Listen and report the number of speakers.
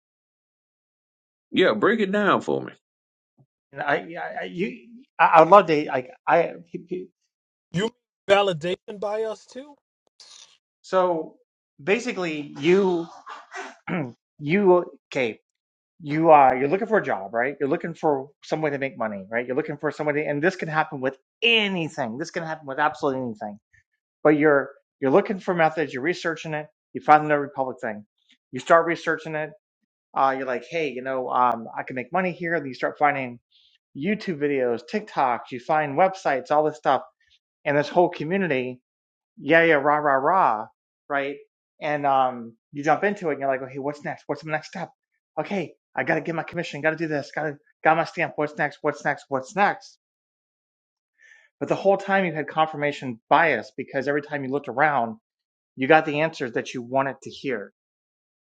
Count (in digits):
3